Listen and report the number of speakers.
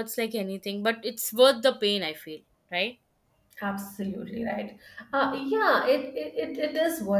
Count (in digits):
2